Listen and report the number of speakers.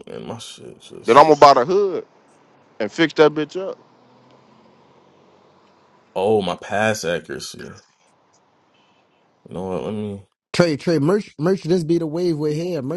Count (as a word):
three